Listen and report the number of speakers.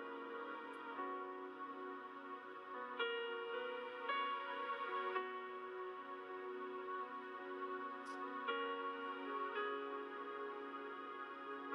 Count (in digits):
0